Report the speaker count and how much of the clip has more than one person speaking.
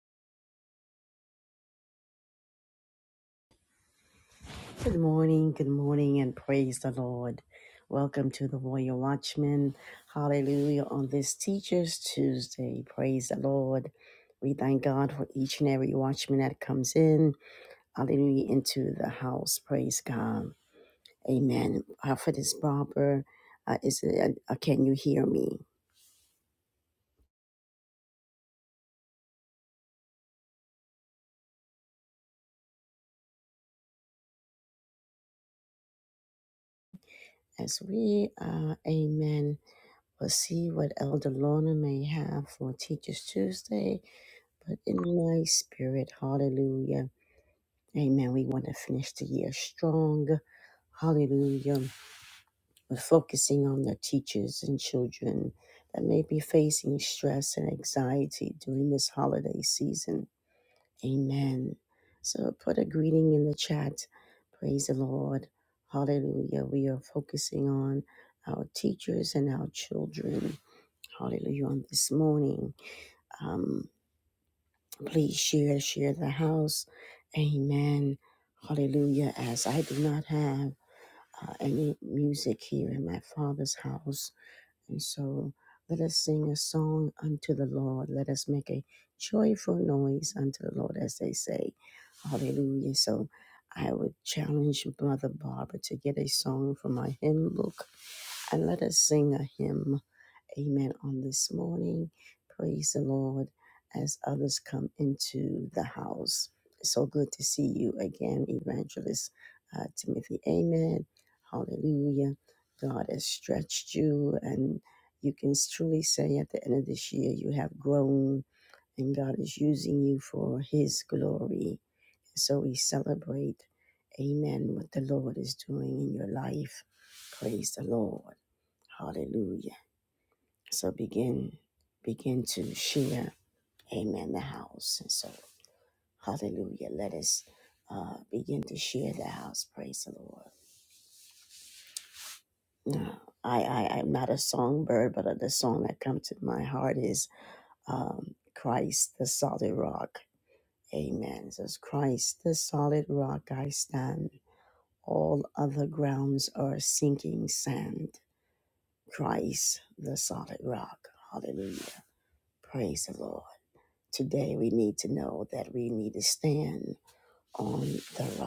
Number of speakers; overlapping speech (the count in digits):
1, no overlap